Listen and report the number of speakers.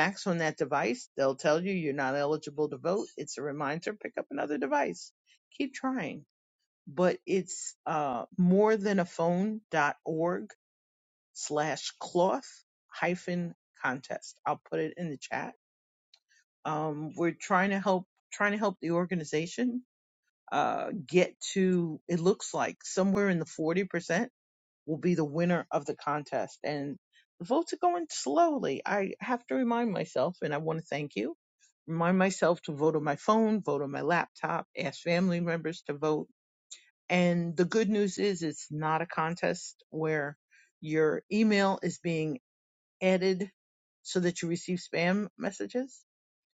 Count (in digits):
1